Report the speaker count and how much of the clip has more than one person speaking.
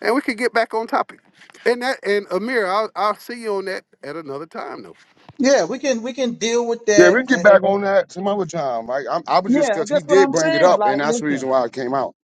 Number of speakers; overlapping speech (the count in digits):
3, about 22%